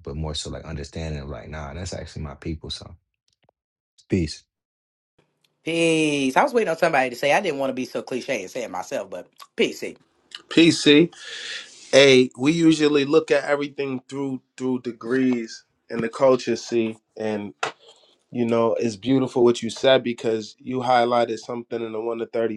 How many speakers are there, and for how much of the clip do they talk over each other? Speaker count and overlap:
three, no overlap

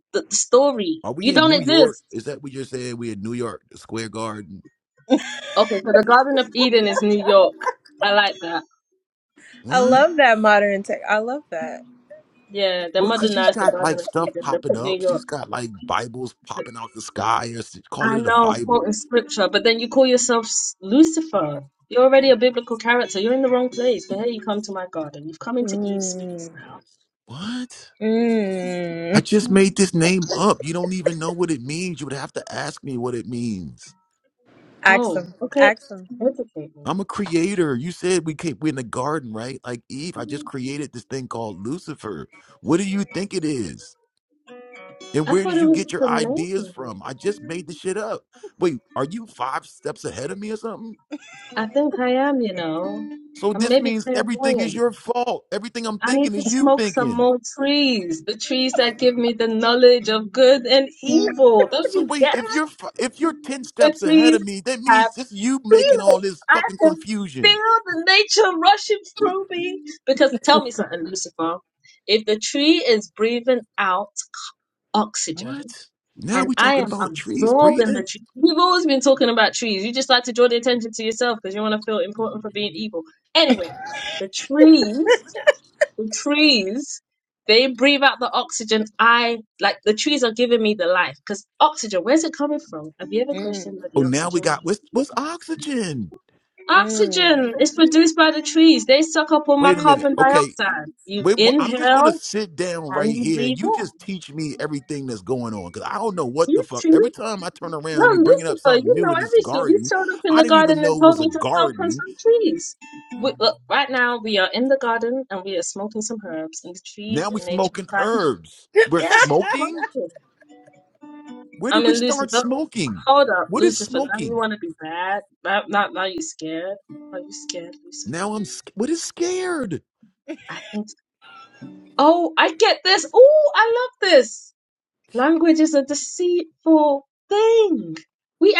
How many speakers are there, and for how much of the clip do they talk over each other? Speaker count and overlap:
three, about 19%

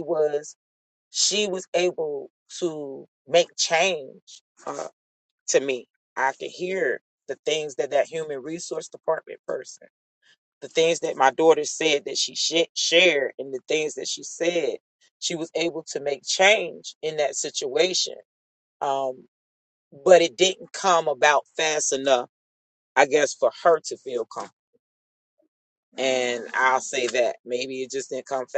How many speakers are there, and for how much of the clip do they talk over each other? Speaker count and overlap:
one, no overlap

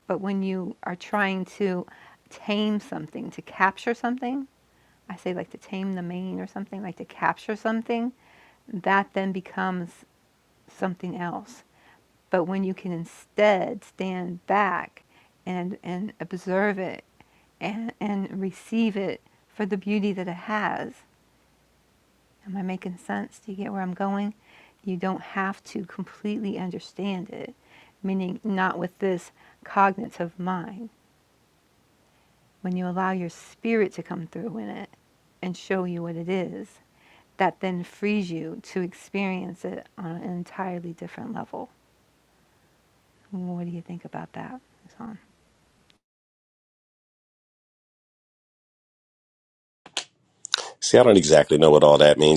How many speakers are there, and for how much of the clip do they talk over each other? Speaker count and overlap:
two, no overlap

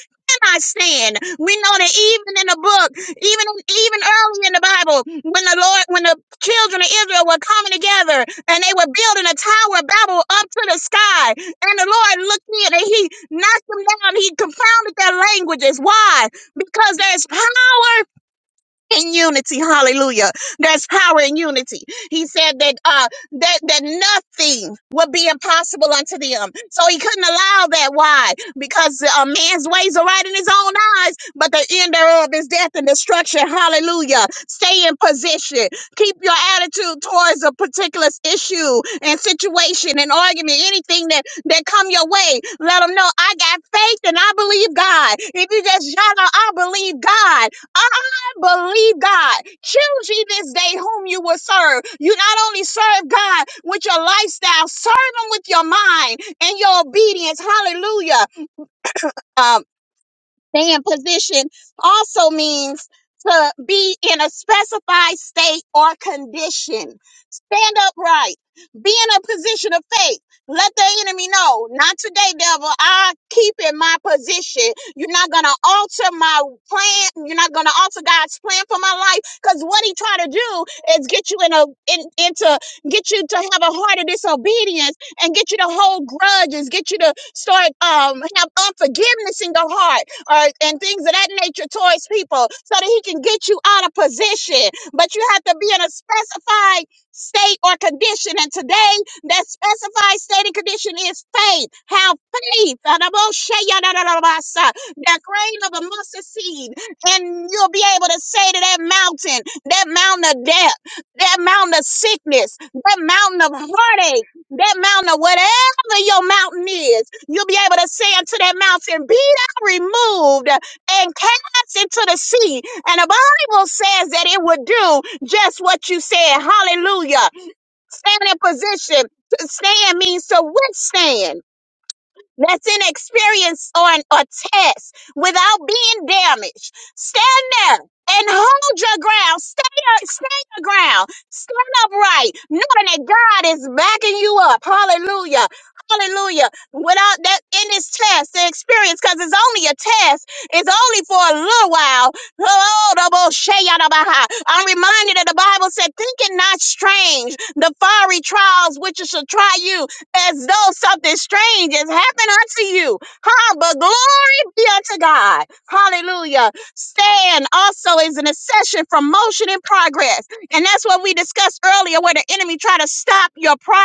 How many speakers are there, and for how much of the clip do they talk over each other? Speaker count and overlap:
one, no overlap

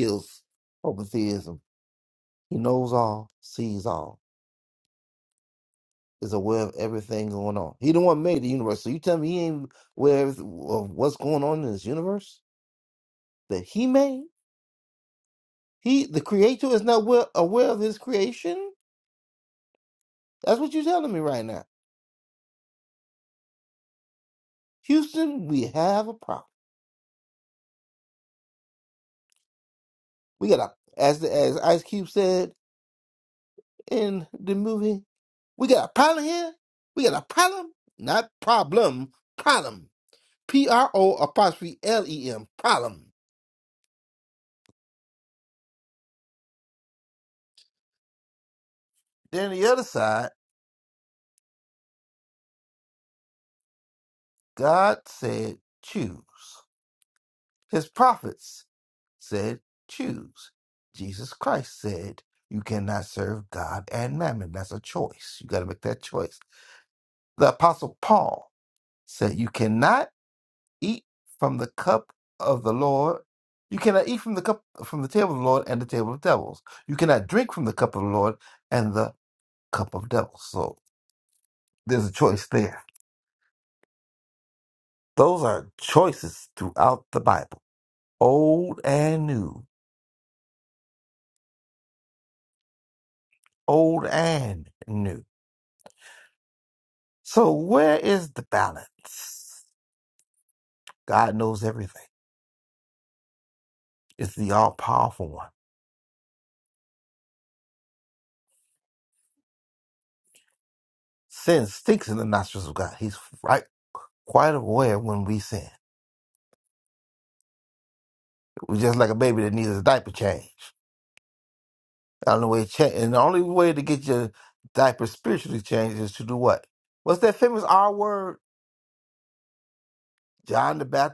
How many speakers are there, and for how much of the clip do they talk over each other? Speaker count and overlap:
one, no overlap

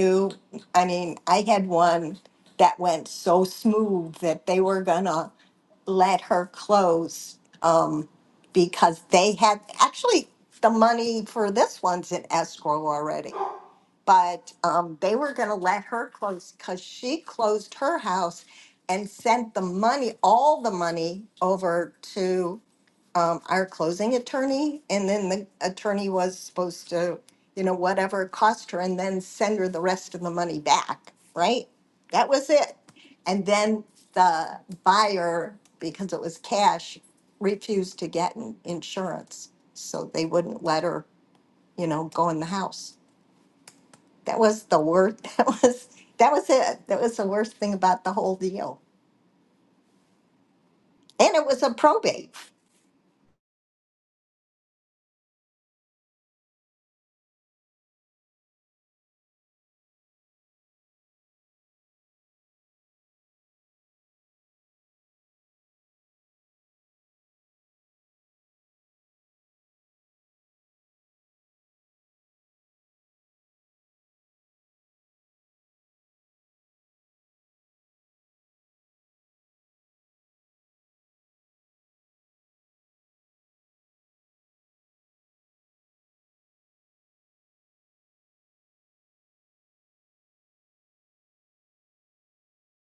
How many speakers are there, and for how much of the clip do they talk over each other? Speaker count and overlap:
one, no overlap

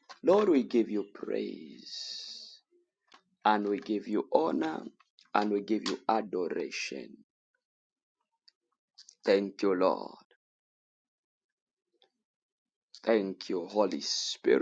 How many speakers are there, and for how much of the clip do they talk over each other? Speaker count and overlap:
one, no overlap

